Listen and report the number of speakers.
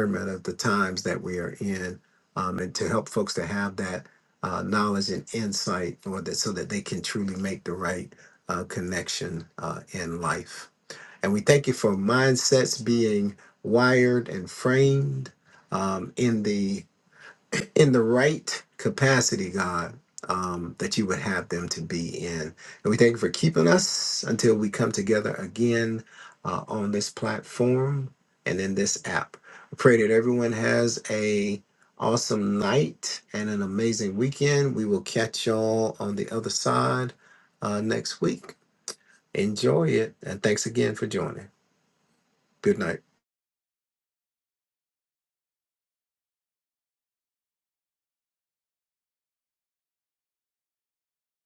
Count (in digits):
1